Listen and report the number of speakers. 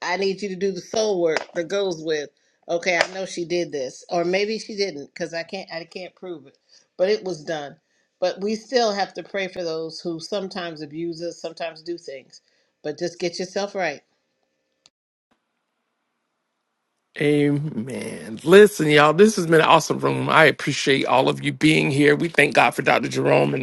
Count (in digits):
2